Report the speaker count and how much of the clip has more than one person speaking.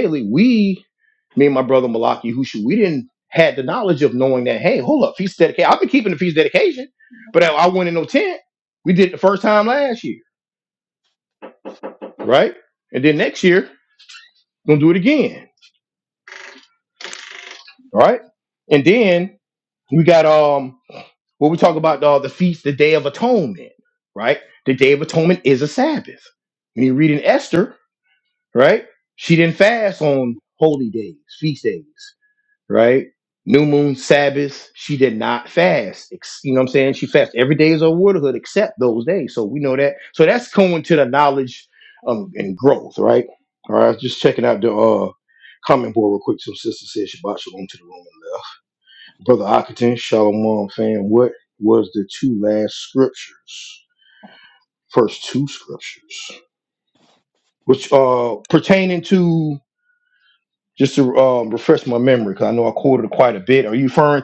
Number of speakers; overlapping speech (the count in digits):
1, no overlap